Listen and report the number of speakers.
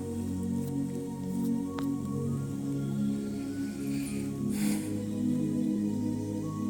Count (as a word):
zero